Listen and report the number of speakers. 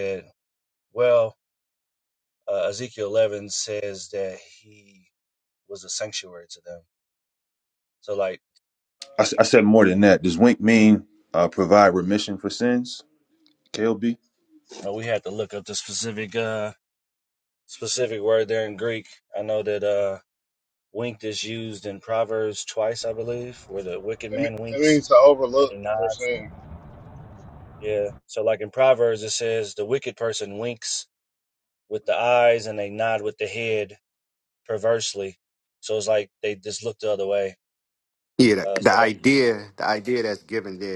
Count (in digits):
4